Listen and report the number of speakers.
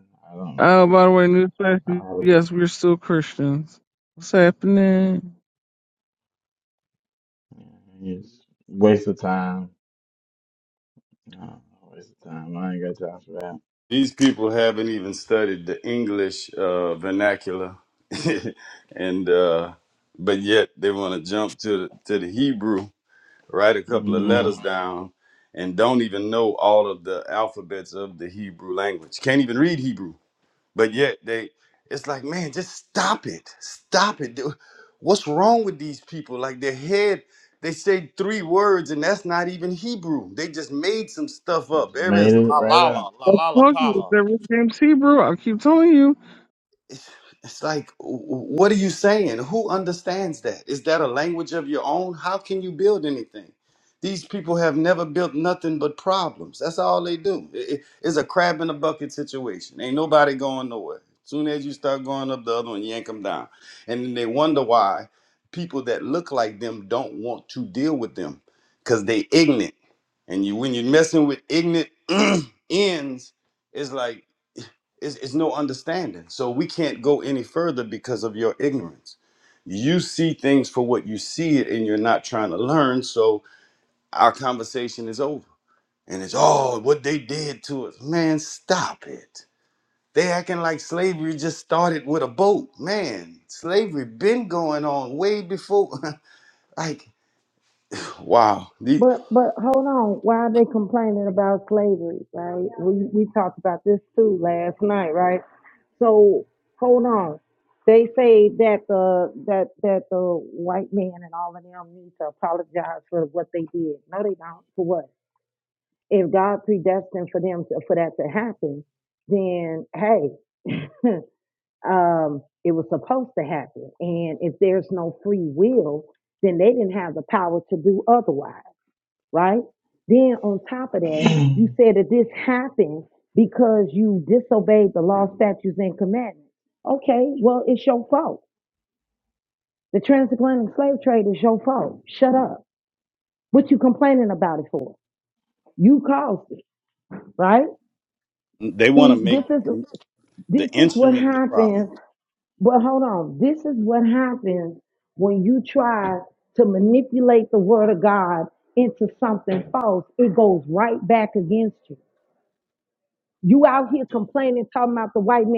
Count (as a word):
four